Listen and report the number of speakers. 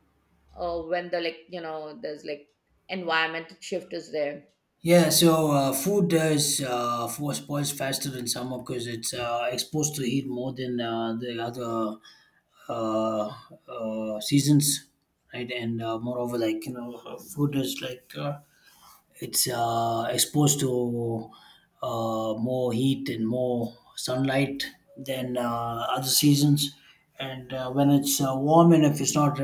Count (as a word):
two